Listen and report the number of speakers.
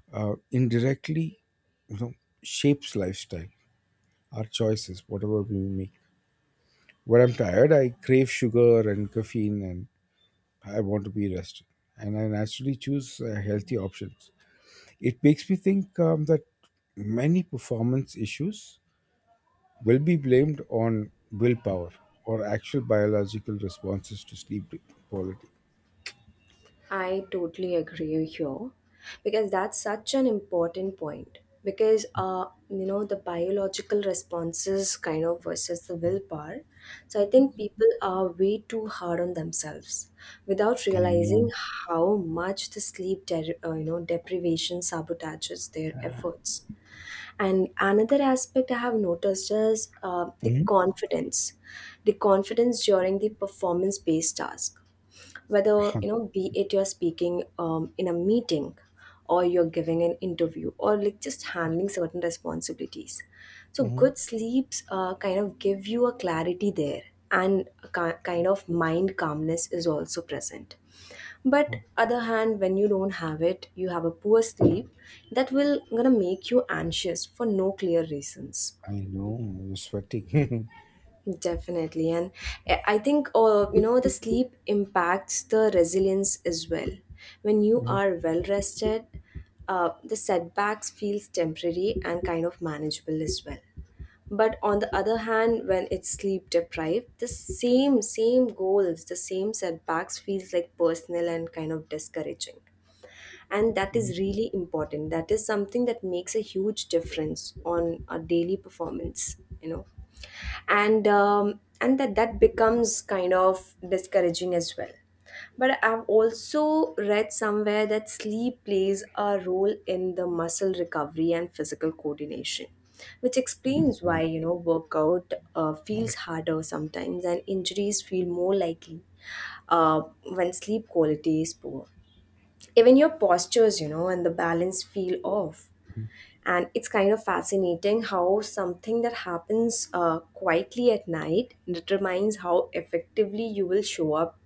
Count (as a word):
two